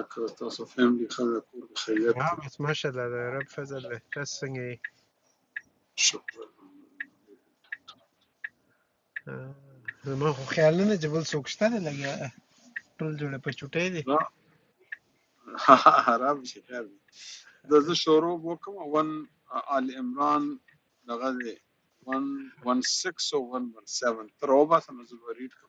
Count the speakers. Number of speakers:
2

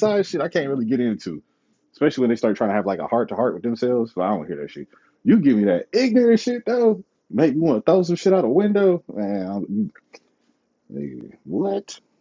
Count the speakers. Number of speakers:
1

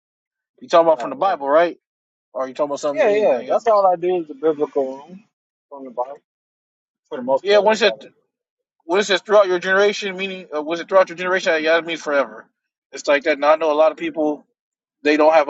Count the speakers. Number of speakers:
2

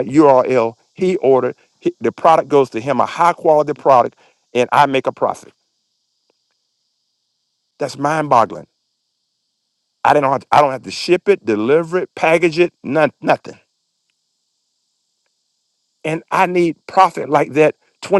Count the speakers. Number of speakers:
1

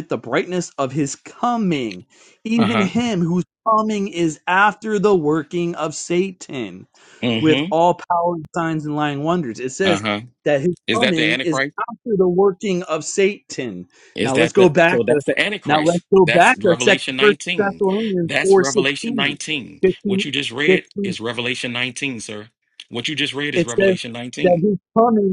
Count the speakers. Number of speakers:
2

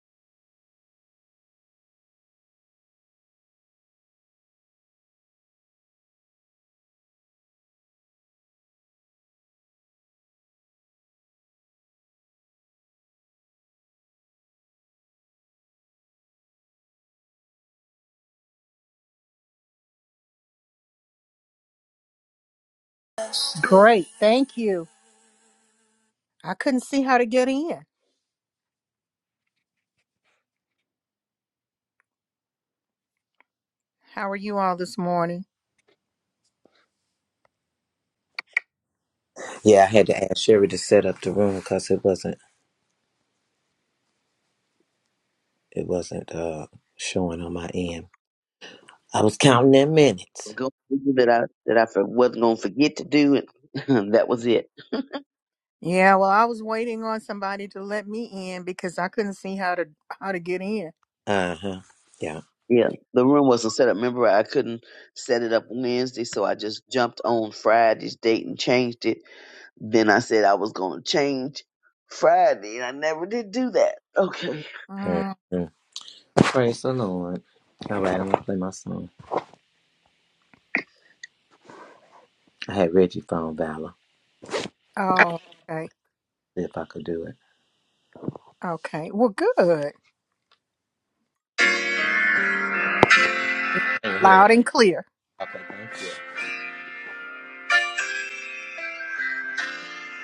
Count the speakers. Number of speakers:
3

